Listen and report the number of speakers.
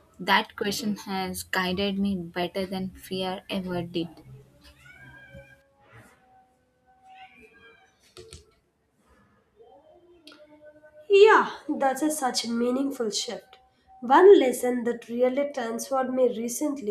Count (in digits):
2